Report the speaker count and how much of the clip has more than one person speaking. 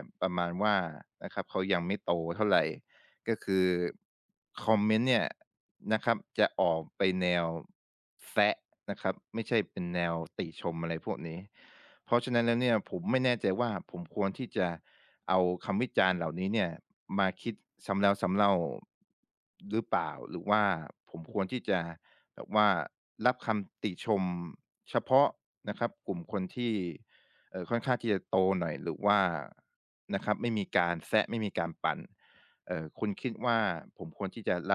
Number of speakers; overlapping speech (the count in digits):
1, no overlap